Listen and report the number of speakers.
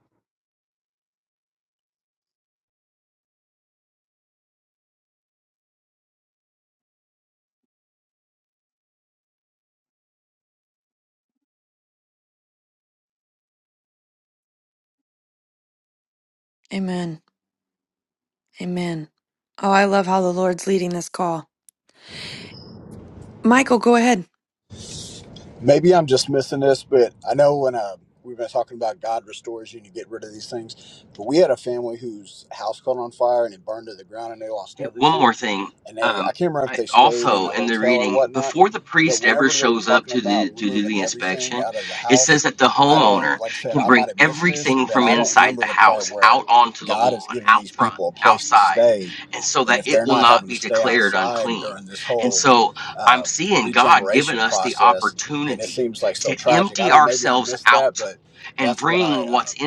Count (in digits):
3